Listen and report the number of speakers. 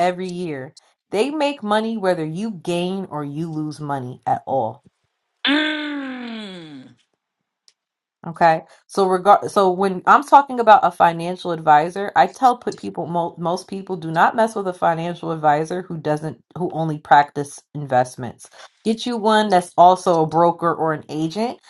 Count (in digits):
2